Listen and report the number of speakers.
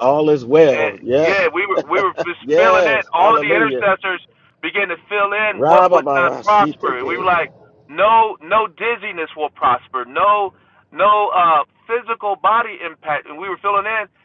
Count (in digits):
2